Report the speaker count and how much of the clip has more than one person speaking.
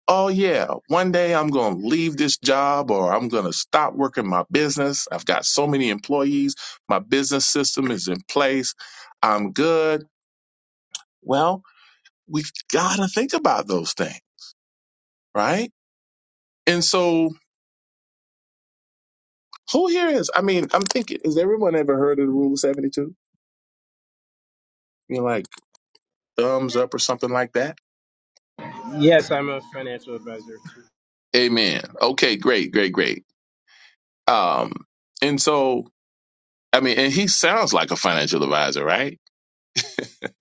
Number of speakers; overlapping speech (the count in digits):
2, no overlap